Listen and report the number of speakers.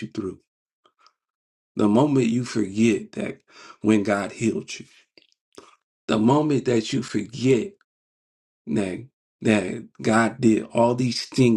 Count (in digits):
1